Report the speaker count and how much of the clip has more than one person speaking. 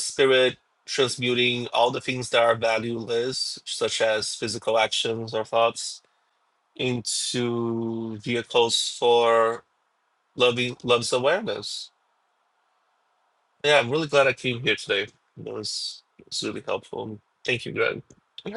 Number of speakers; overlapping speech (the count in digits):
1, no overlap